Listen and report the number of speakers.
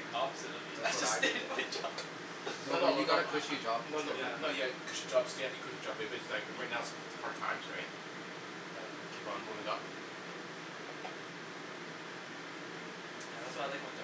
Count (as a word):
three